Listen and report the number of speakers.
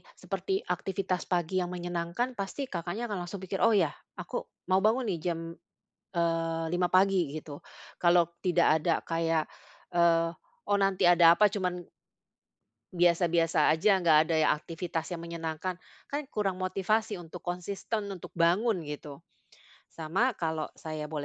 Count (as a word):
one